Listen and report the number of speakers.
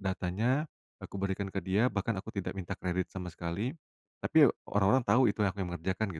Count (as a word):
one